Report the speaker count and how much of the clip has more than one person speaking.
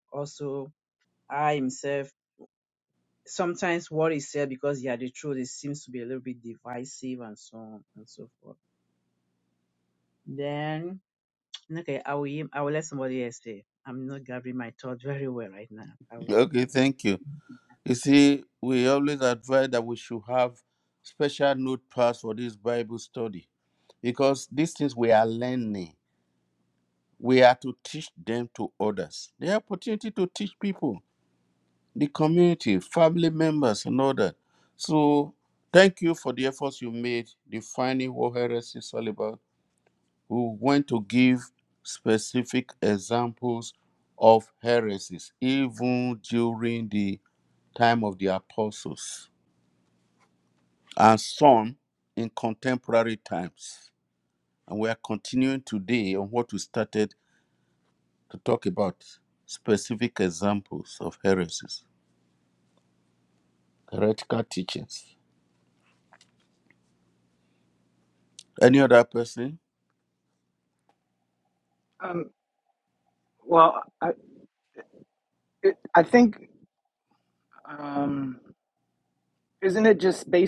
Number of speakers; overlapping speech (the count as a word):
three, under 1%